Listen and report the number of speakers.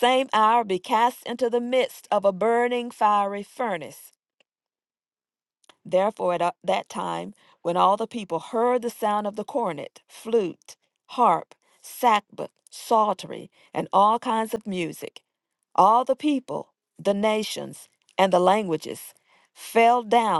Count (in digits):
1